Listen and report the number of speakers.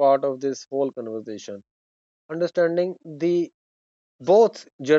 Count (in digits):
1